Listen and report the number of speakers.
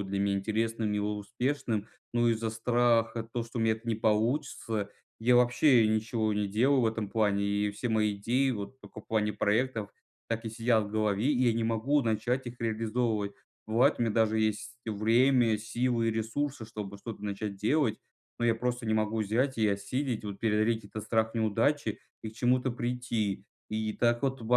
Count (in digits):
1